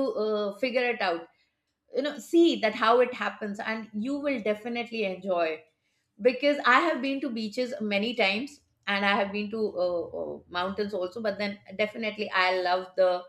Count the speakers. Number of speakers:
1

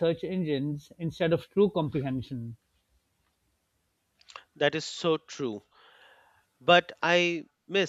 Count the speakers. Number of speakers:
2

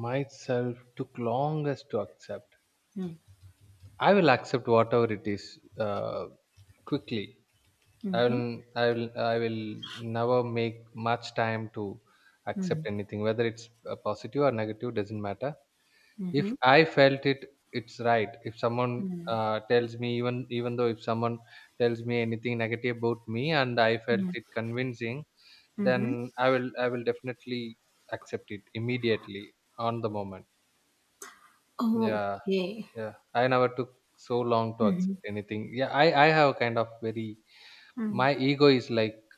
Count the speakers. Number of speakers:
2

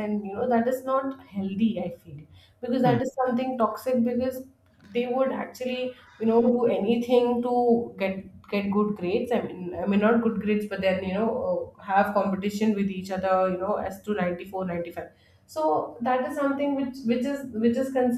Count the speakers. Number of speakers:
1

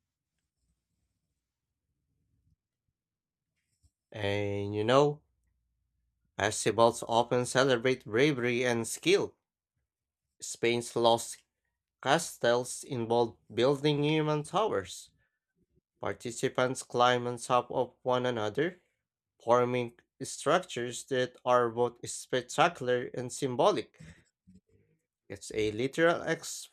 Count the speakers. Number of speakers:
1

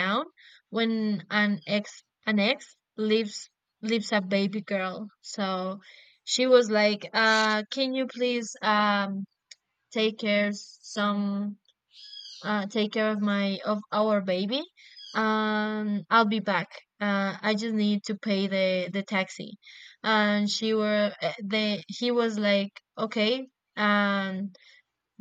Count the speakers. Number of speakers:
1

